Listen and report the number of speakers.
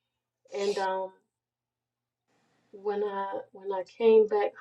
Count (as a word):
one